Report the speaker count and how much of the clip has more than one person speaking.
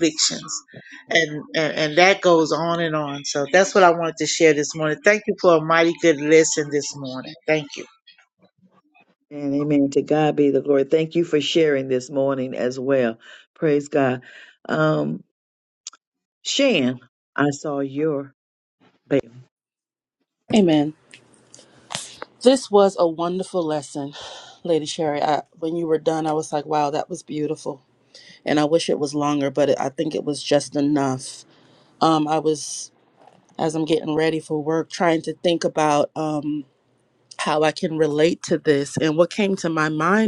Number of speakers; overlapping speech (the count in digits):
3, no overlap